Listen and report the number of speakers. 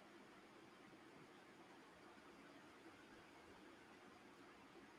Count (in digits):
0